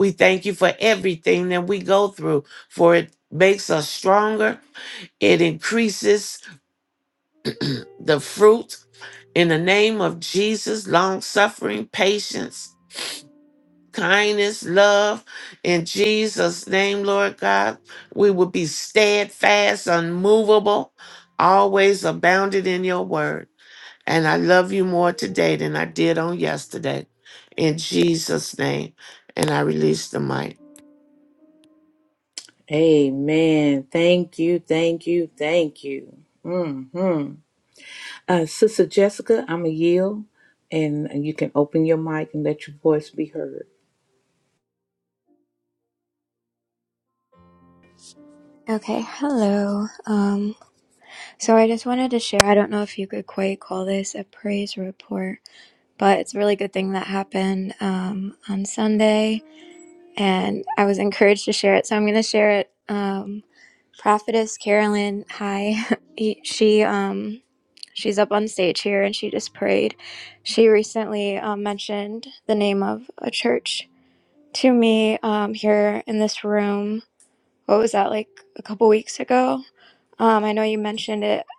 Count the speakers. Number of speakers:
3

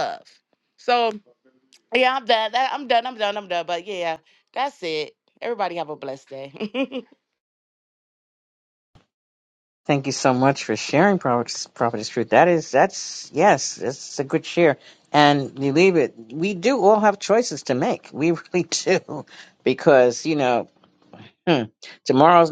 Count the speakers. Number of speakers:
2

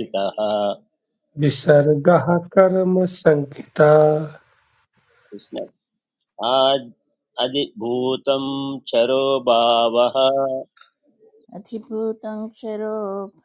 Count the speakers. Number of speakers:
3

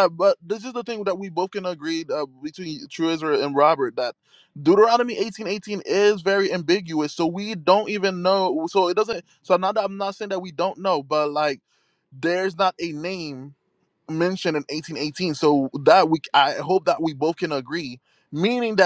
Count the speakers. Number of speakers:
1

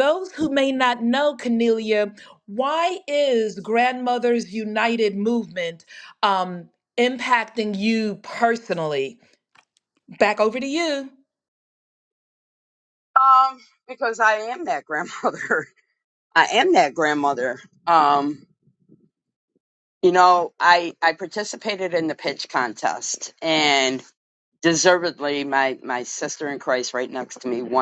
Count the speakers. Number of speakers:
2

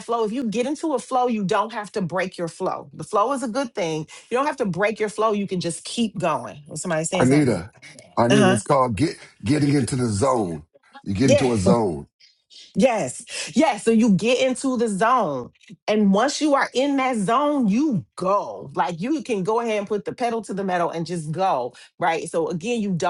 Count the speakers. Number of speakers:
2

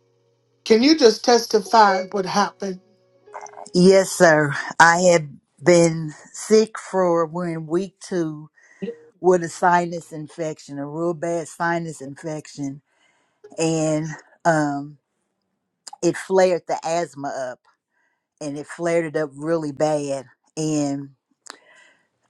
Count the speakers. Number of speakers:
2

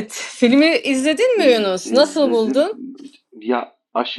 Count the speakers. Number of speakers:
2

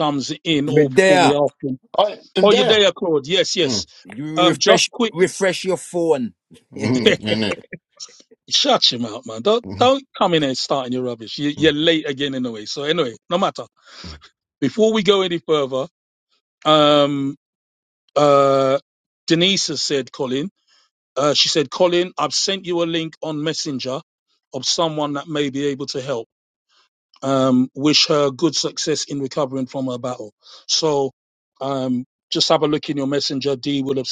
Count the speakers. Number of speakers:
3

